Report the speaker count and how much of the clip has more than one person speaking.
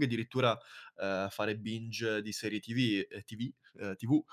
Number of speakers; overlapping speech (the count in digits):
1, no overlap